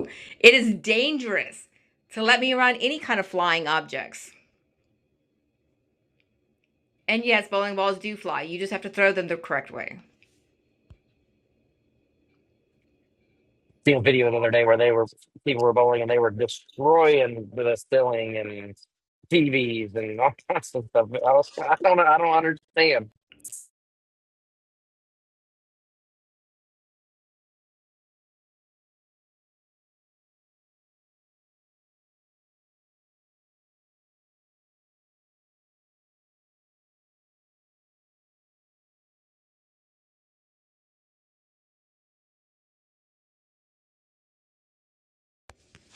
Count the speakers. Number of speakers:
two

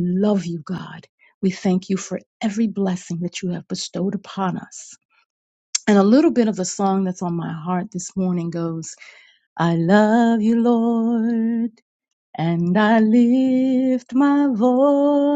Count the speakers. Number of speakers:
one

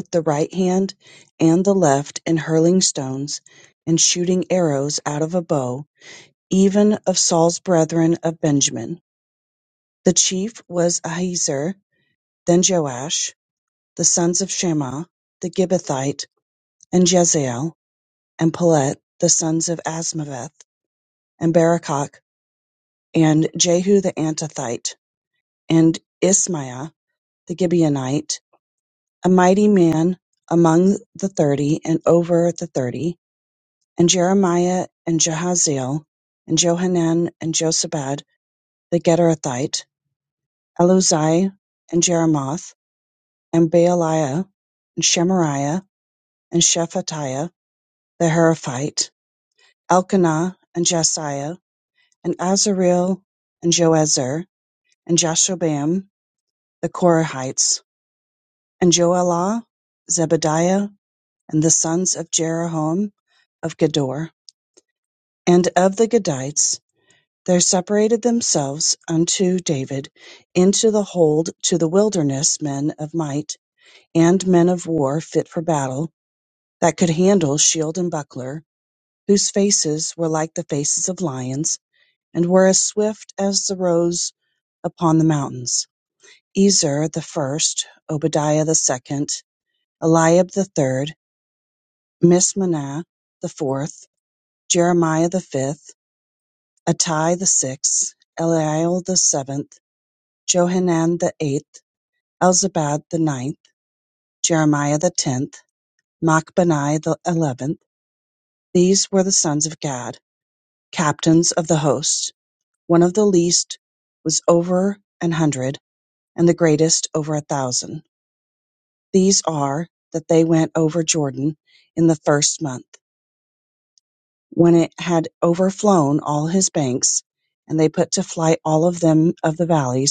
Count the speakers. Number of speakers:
one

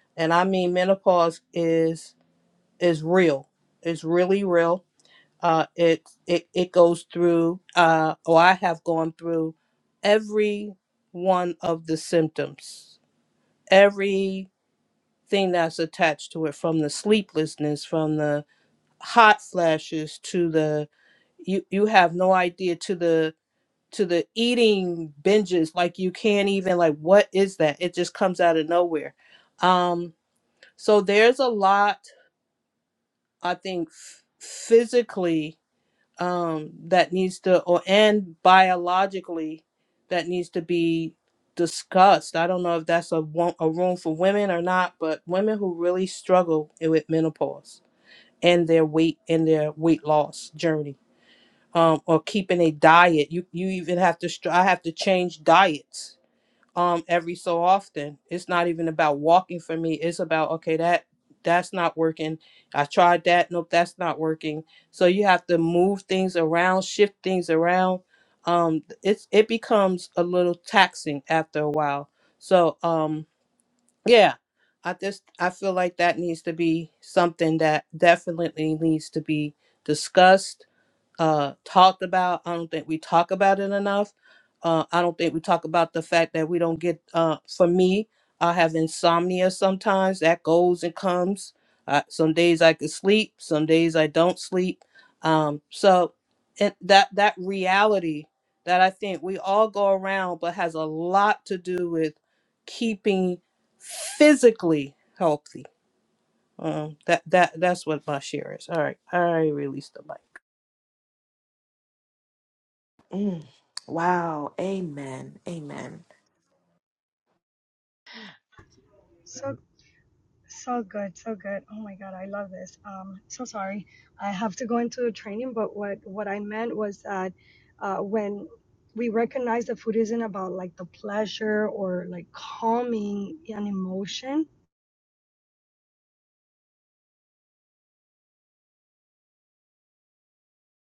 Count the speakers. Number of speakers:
three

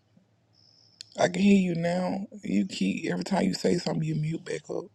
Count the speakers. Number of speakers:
one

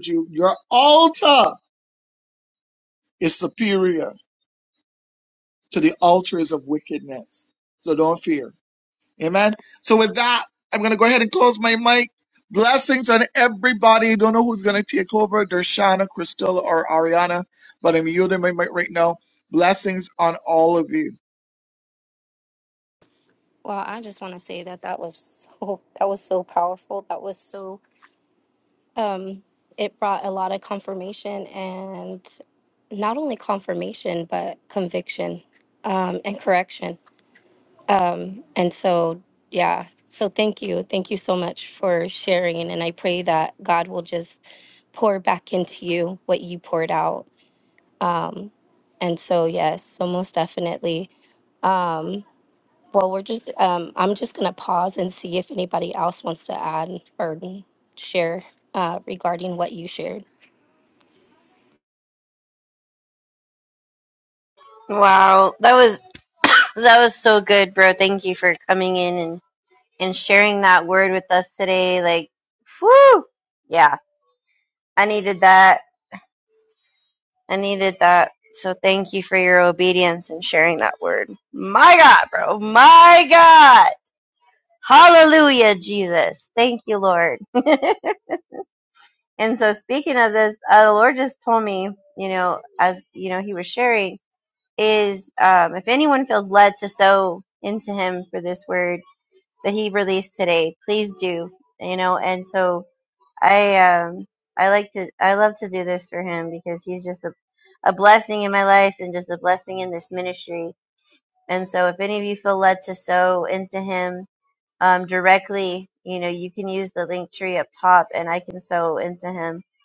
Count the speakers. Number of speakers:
three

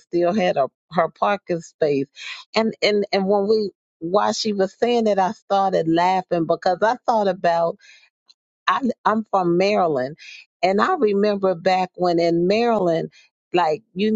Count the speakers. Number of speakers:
one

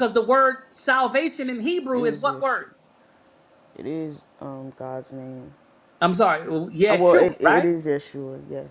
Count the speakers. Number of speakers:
two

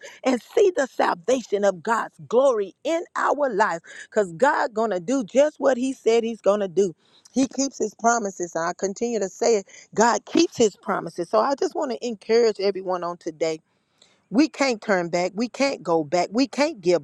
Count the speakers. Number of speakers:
one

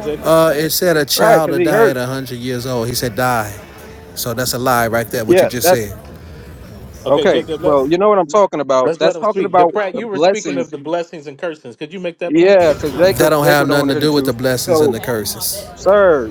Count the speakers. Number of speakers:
three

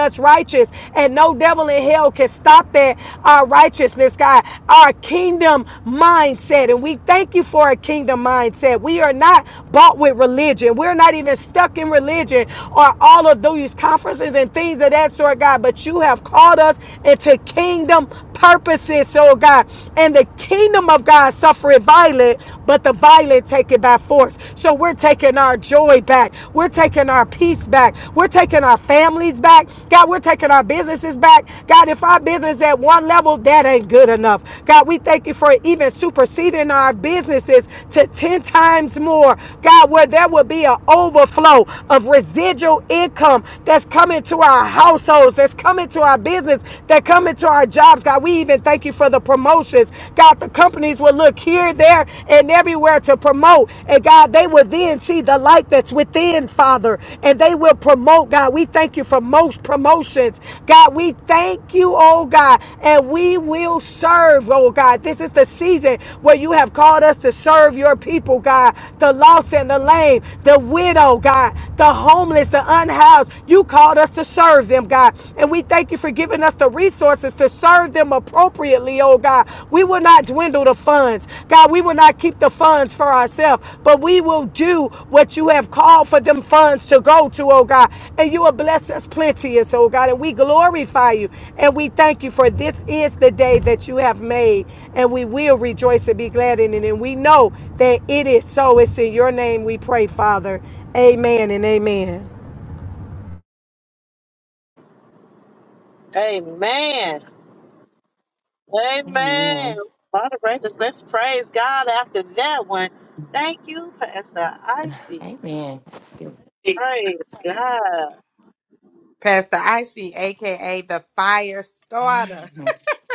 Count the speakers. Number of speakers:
four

